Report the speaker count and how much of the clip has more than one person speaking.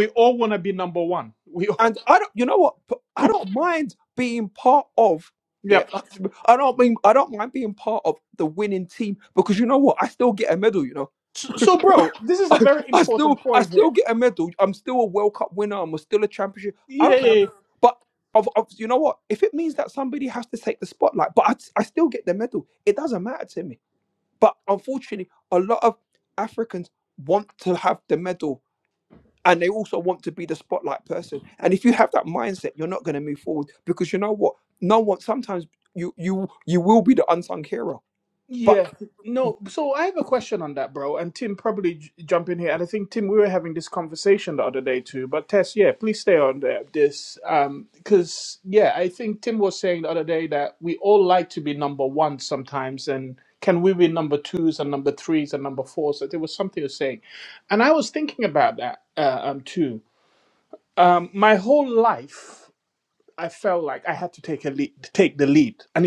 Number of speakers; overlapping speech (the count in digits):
2, about 3%